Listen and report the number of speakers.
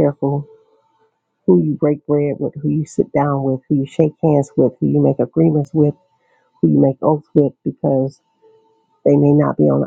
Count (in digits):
1